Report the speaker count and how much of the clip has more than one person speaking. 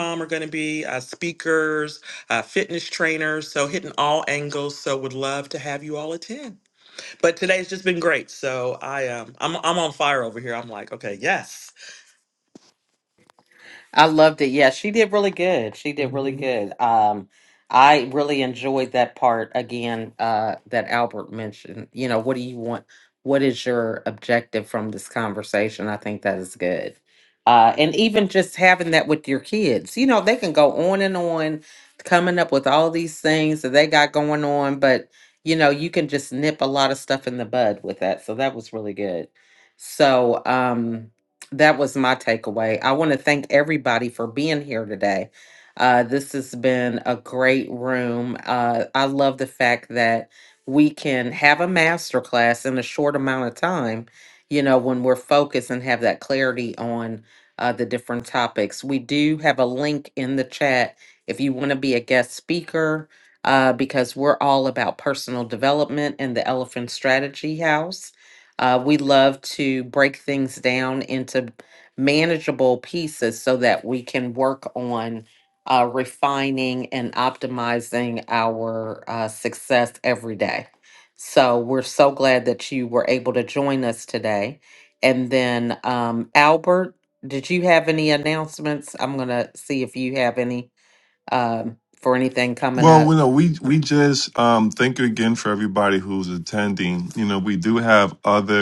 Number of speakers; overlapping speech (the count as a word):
three, about 1%